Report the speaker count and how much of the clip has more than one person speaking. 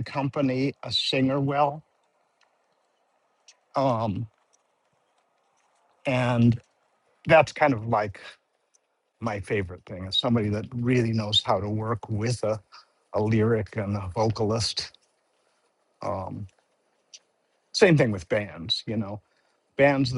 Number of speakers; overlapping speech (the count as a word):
one, no overlap